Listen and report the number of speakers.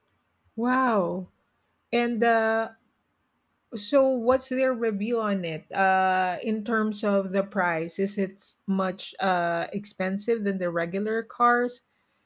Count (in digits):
1